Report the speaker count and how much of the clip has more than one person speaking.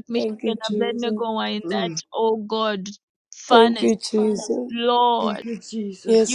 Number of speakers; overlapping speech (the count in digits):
3, about 37%